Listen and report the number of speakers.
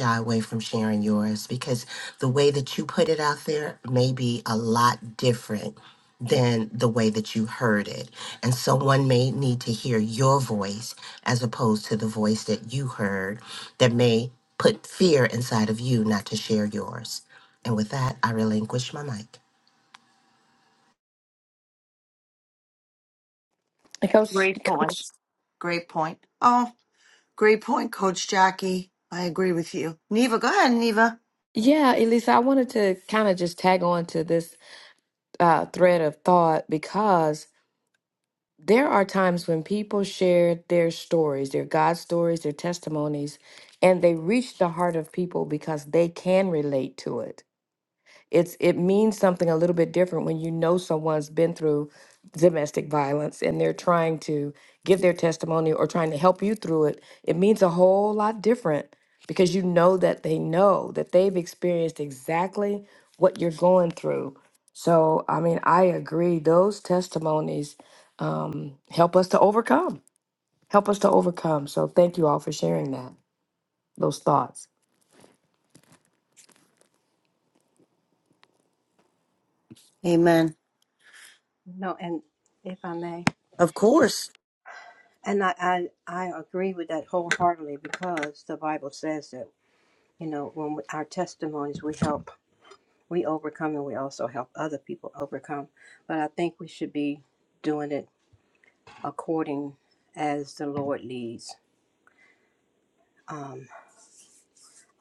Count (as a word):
four